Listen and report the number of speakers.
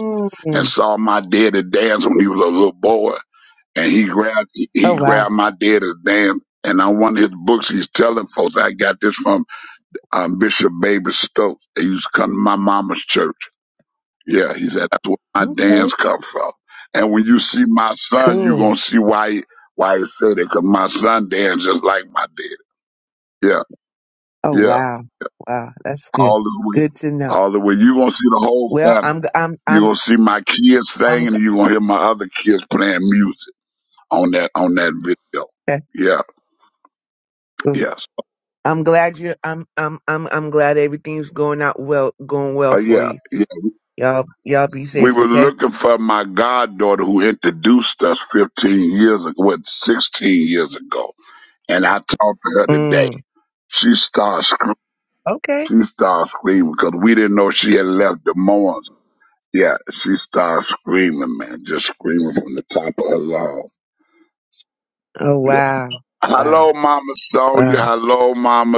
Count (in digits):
2